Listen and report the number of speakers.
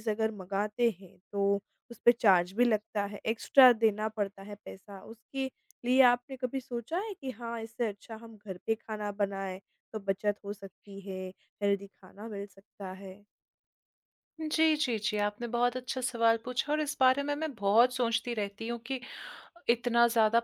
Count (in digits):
2